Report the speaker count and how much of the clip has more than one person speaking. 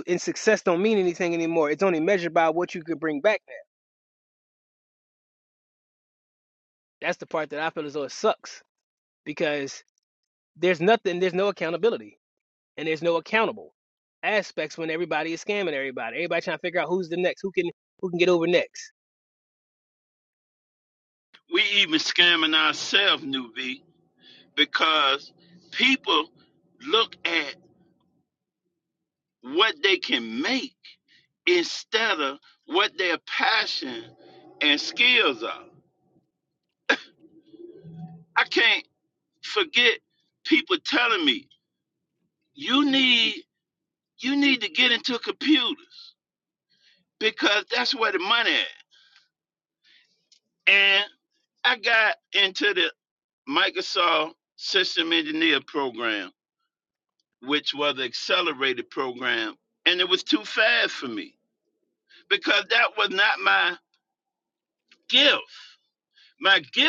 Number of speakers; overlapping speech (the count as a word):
two, no overlap